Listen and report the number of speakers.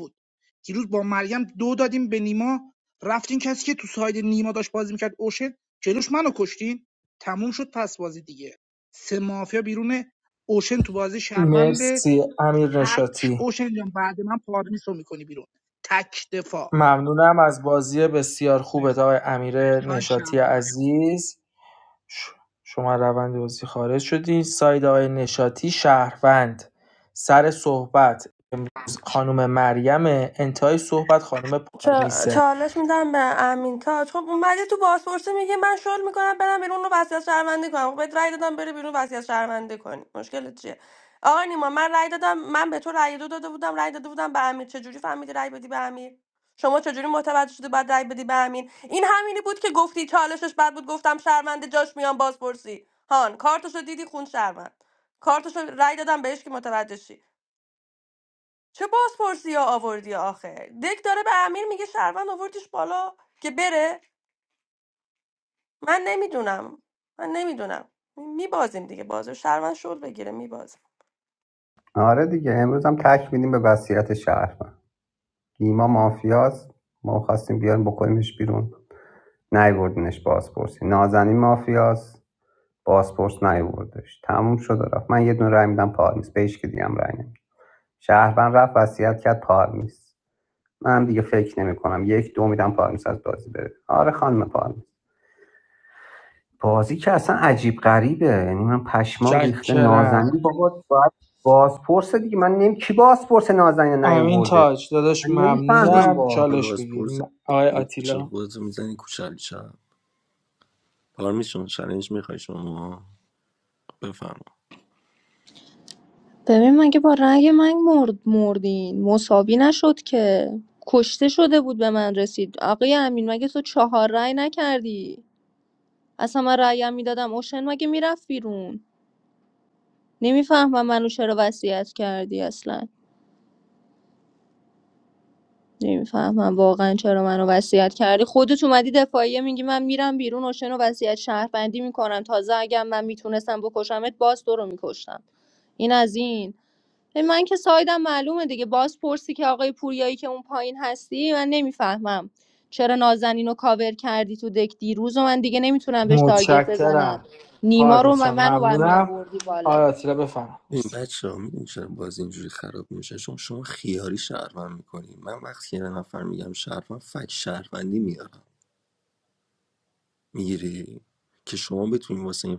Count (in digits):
6